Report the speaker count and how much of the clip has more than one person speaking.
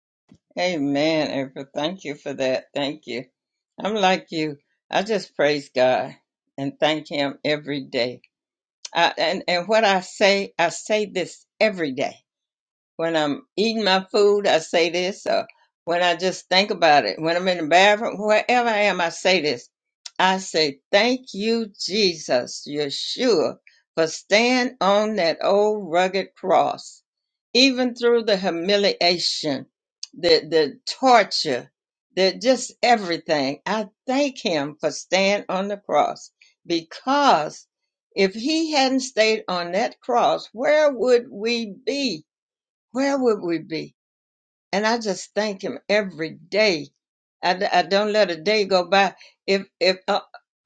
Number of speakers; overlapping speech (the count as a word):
one, no overlap